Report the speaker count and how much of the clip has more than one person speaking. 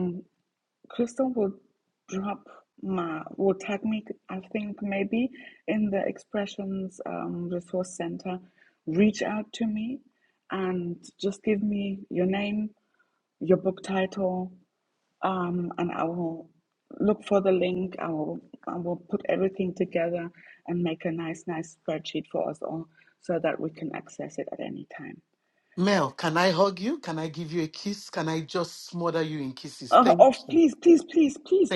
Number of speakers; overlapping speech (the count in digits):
2, about 2%